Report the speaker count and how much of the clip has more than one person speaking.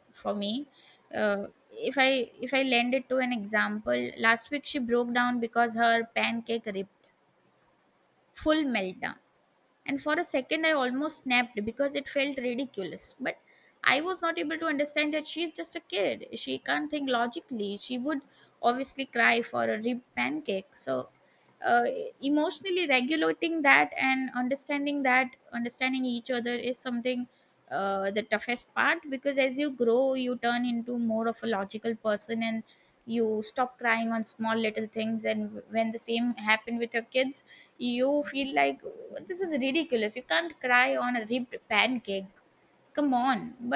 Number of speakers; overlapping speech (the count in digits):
1, no overlap